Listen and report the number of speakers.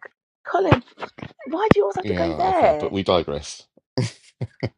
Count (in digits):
2